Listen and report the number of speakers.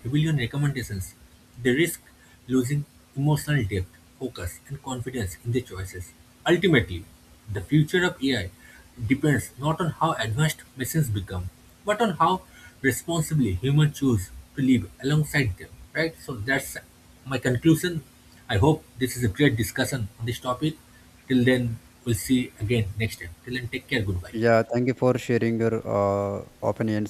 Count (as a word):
two